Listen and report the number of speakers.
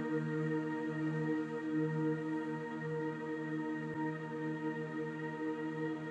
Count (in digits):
0